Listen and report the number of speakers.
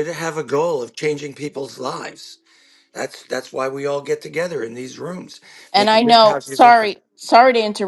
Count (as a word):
two